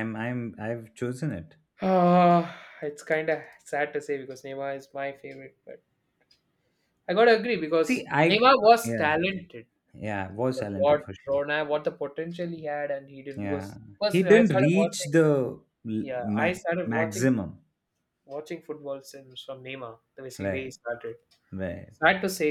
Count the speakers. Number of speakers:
two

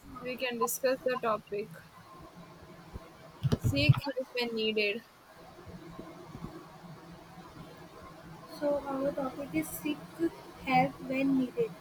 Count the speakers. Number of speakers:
two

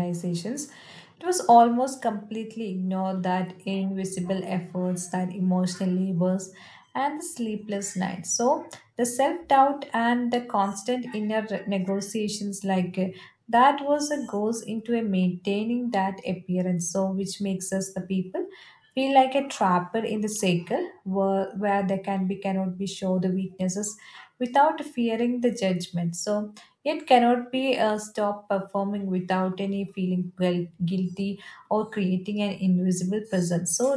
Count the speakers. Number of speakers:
one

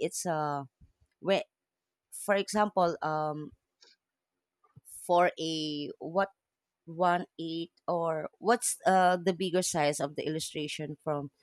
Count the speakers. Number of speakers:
one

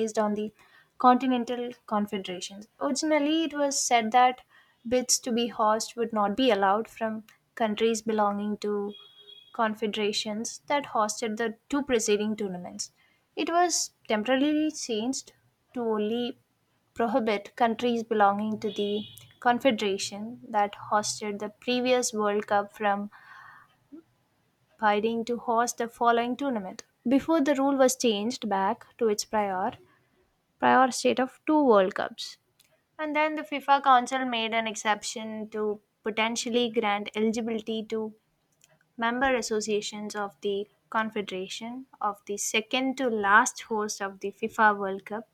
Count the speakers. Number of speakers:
one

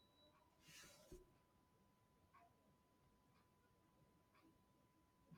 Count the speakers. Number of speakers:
zero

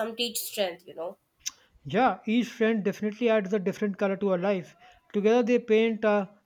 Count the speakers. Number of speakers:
two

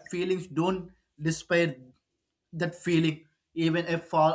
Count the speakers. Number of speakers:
one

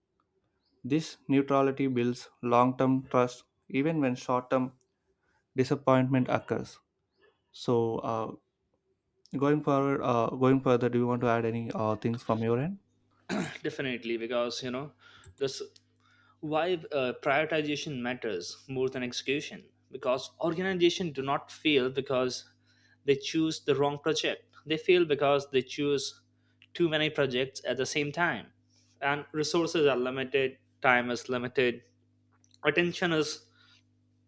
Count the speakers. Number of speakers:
two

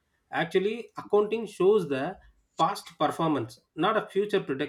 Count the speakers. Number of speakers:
one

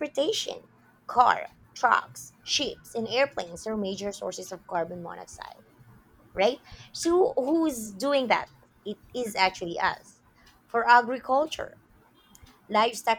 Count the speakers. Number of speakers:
one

